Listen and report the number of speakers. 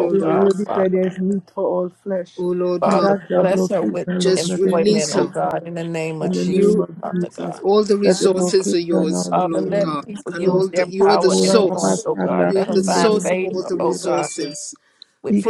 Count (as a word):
three